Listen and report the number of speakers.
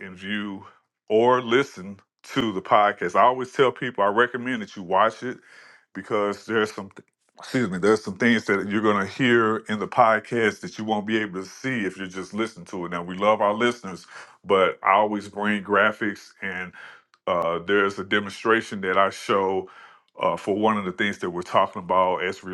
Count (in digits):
1